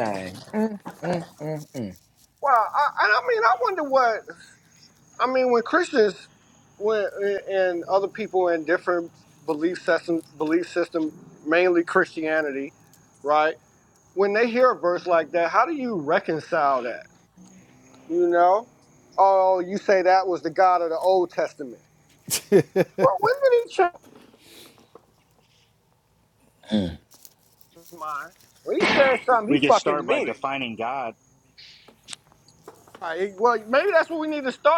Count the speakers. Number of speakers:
3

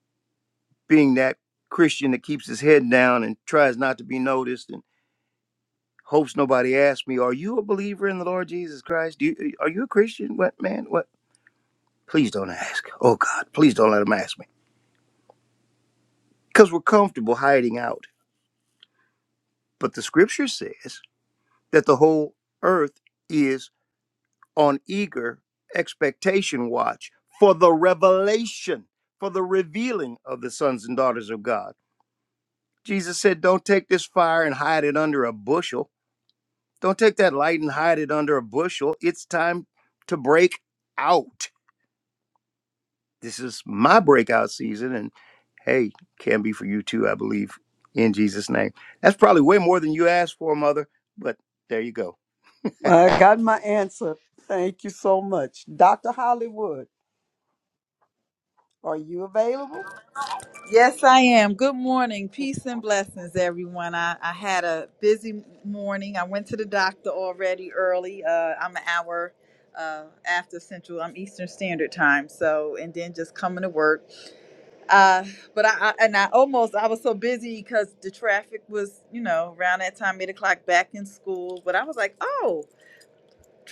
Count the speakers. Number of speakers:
3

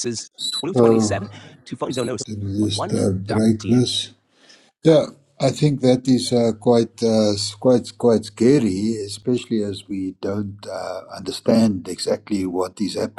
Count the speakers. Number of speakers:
2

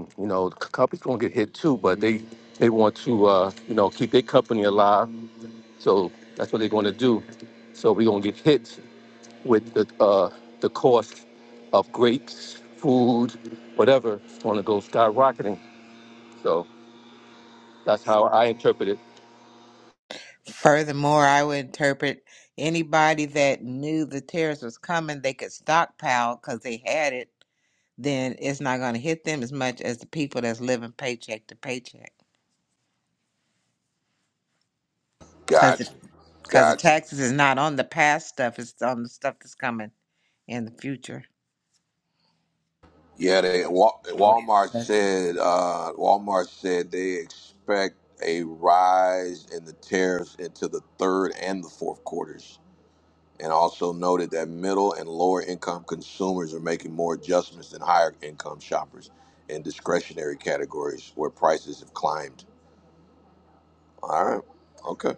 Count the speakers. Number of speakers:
3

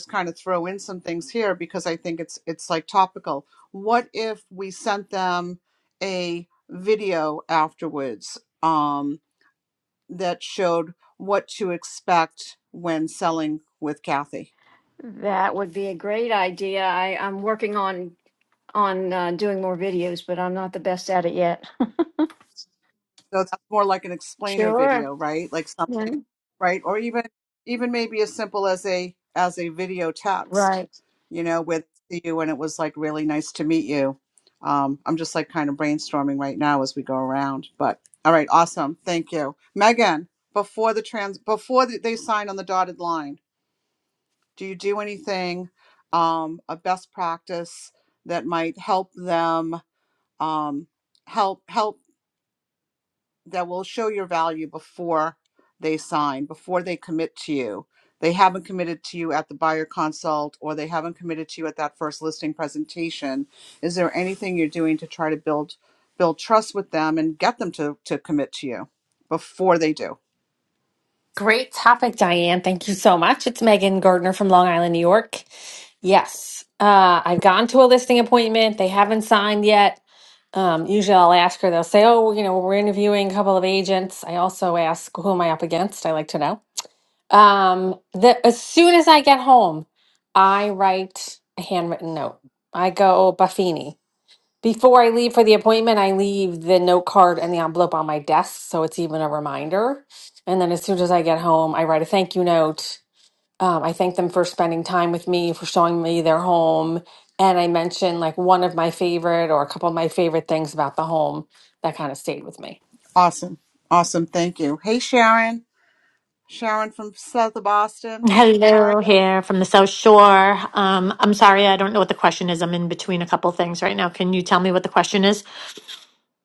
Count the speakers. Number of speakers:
4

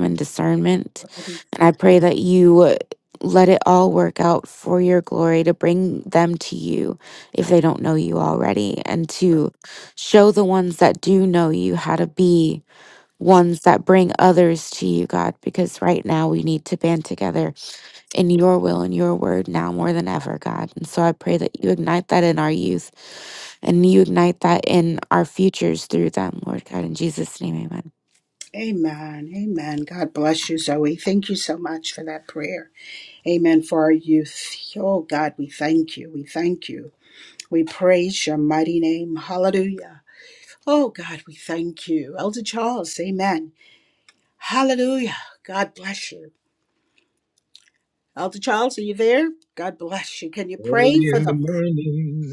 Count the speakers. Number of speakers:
3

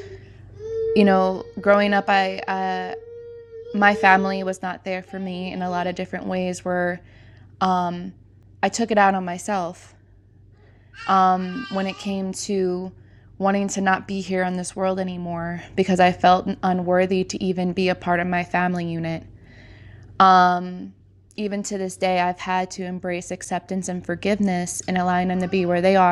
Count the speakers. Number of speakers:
1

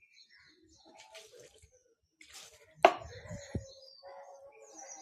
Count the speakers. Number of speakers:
0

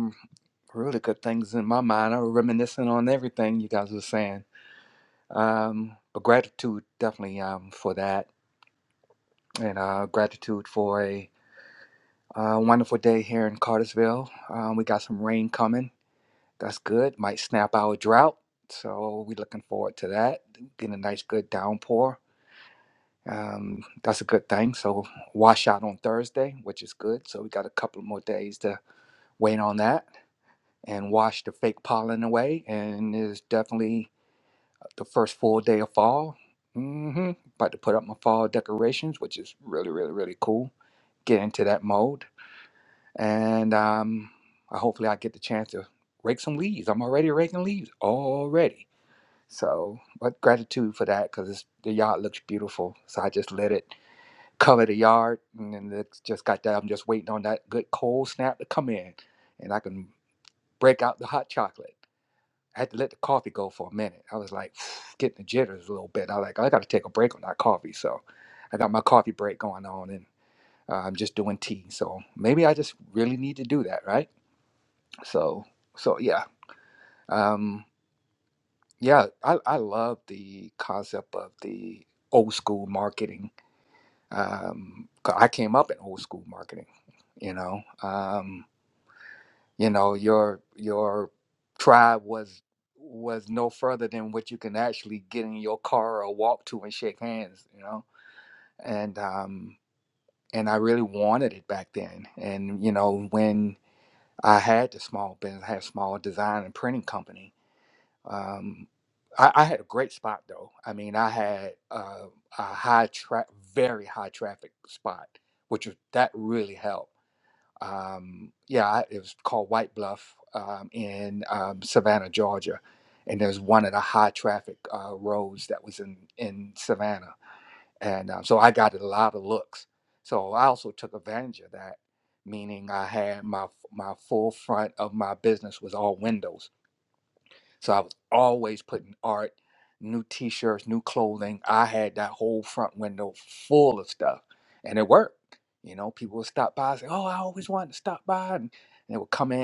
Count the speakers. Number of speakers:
1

